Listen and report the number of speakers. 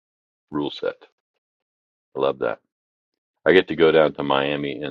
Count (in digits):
1